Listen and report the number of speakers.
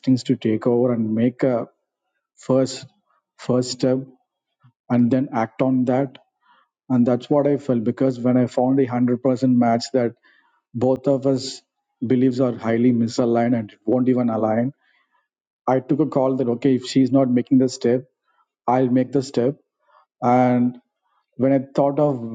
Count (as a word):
one